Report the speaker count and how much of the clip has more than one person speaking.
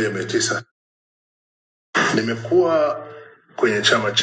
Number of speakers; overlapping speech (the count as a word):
one, no overlap